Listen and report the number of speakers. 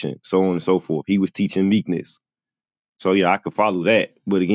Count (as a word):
one